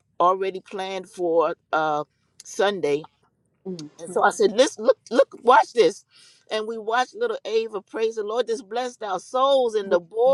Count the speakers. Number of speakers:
one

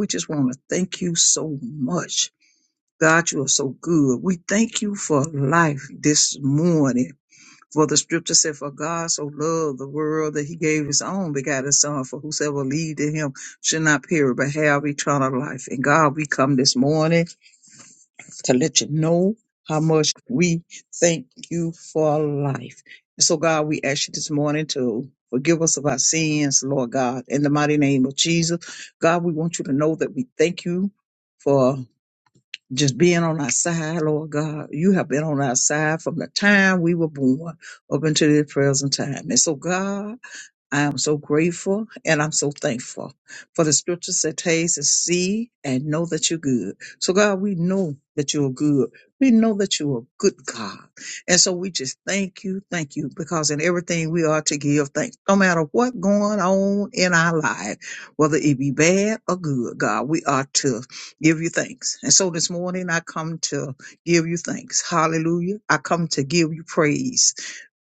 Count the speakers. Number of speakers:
one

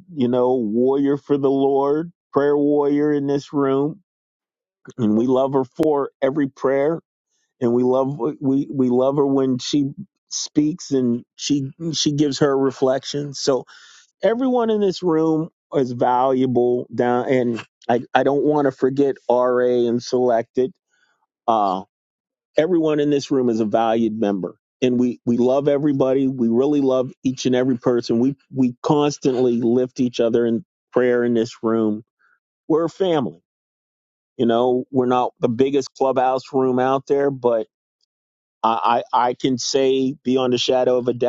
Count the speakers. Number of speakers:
one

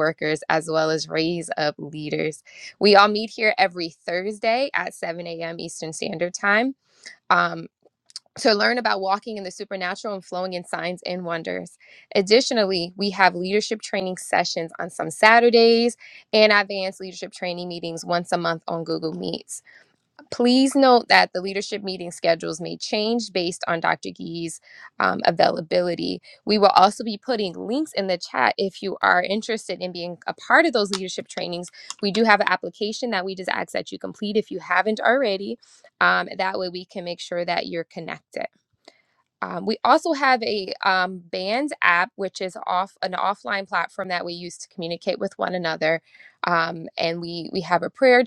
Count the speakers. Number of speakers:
one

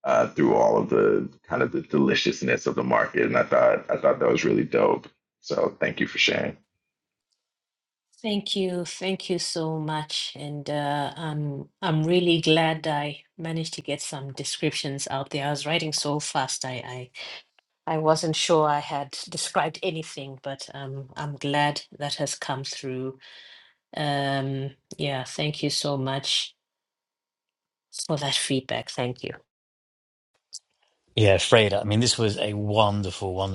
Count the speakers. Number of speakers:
three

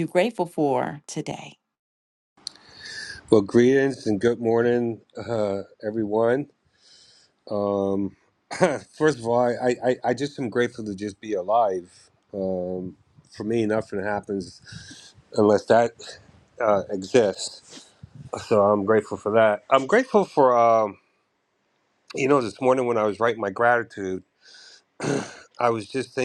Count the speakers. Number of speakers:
two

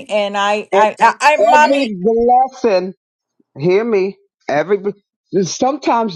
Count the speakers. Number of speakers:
two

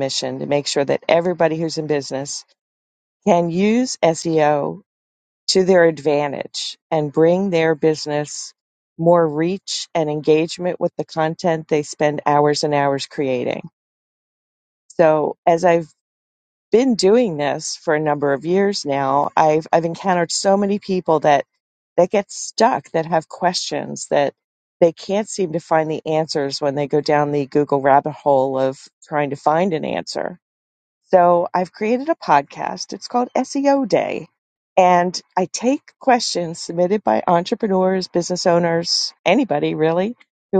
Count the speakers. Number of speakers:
one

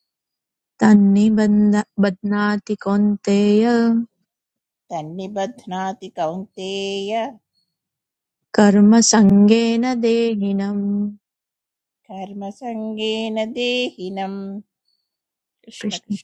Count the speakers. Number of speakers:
two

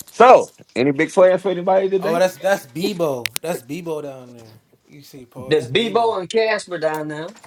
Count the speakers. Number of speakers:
three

